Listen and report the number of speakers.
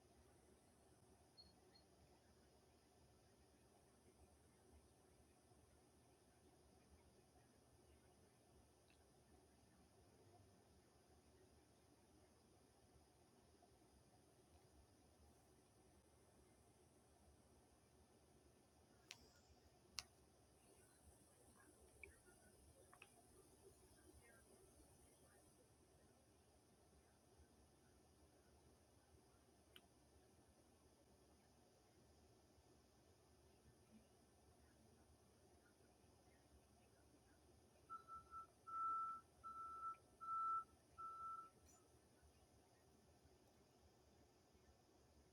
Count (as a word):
zero